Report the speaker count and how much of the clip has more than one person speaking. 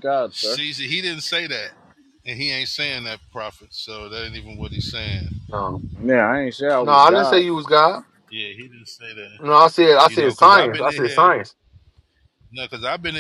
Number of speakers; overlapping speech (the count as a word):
three, about 16%